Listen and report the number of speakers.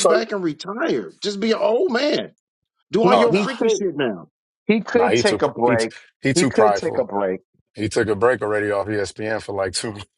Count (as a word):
three